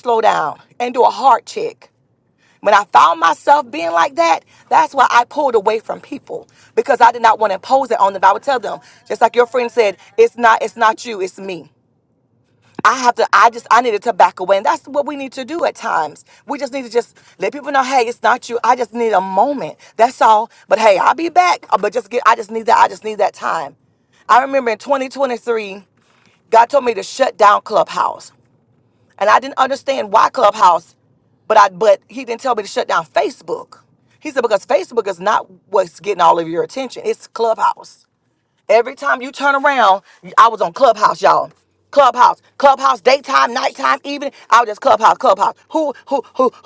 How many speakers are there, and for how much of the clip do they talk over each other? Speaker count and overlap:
one, no overlap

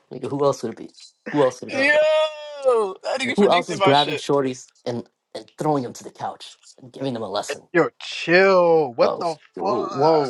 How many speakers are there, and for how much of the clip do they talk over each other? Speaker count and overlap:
three, about 19%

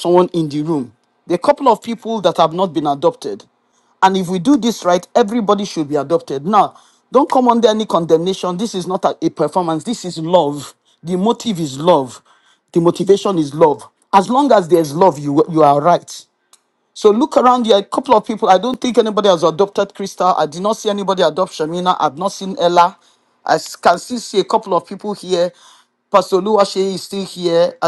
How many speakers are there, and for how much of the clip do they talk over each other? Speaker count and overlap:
one, no overlap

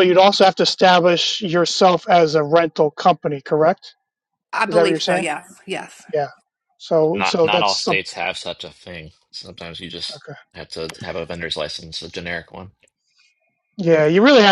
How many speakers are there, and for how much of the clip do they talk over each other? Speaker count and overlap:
three, about 10%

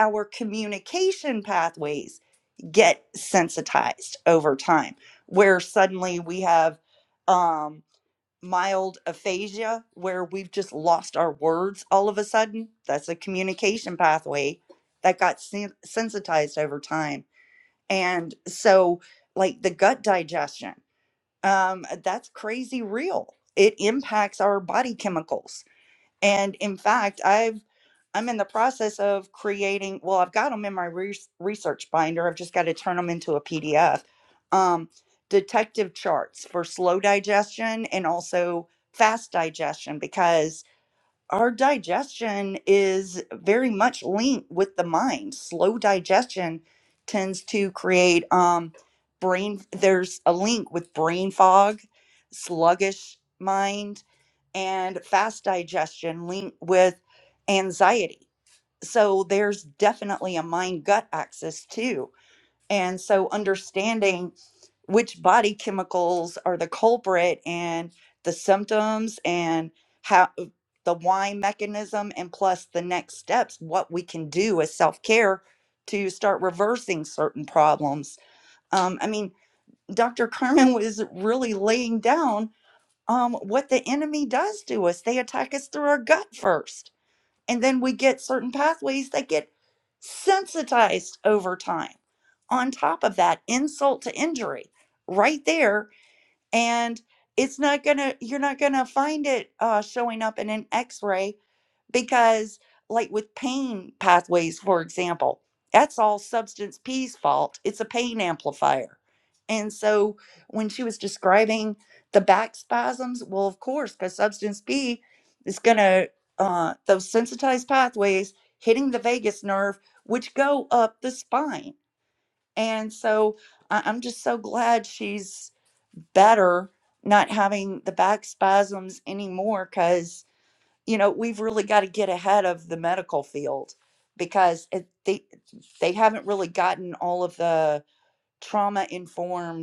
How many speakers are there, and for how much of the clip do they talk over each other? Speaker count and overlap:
one, no overlap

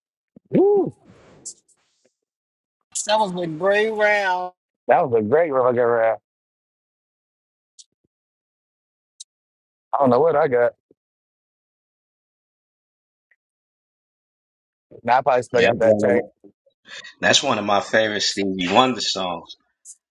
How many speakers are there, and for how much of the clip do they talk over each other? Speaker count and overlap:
three, about 3%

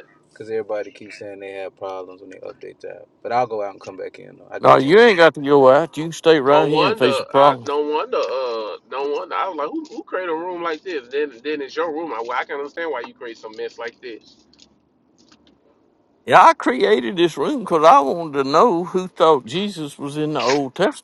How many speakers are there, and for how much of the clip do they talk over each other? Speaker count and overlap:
three, about 8%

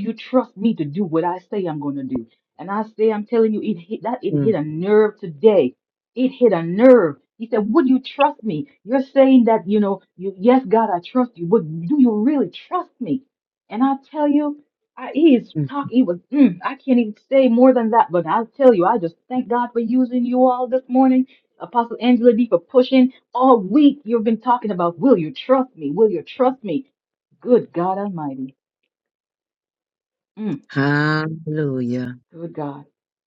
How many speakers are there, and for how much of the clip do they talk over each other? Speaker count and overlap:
two, about 1%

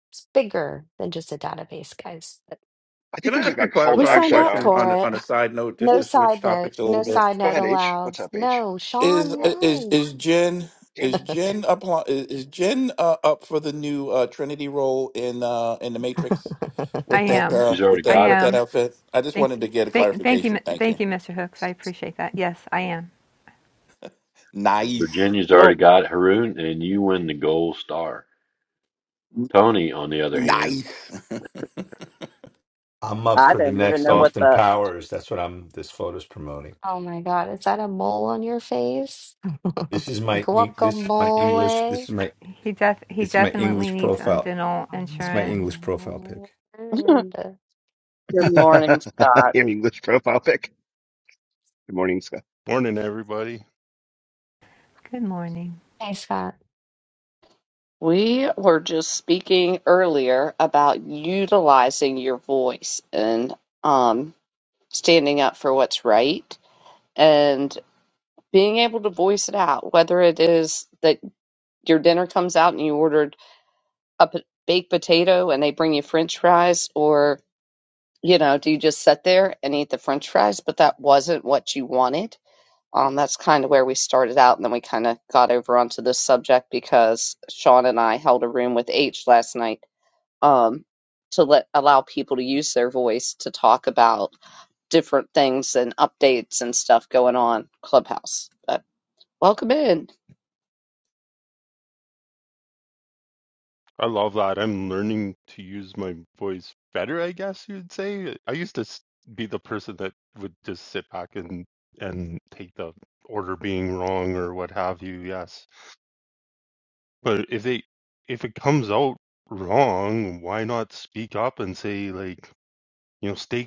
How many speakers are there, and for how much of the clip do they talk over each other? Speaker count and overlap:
eight, about 11%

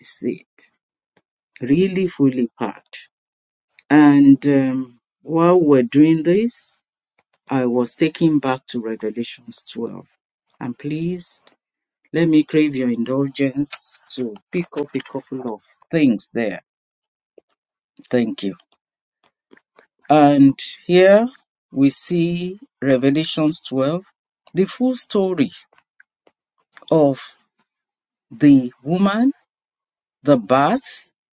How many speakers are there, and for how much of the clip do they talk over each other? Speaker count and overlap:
one, no overlap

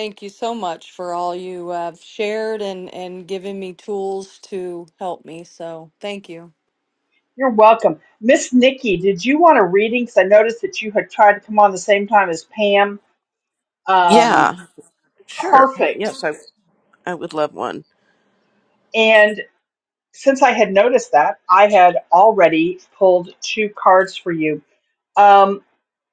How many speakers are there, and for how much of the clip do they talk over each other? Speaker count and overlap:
three, about 4%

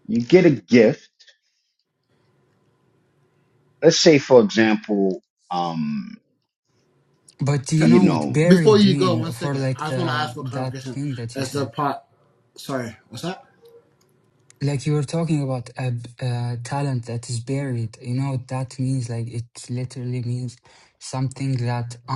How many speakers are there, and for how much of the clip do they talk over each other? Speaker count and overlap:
three, about 15%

